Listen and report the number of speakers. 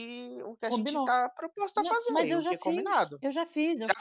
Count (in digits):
2